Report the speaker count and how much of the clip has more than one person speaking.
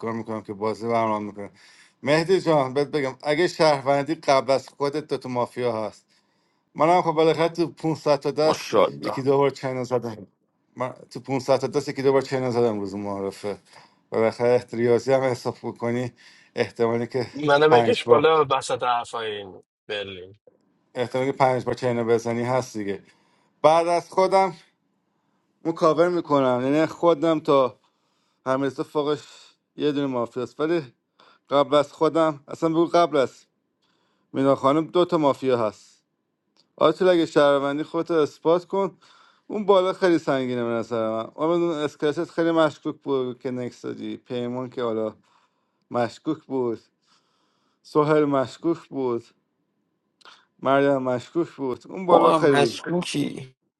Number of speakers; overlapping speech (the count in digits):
3, about 3%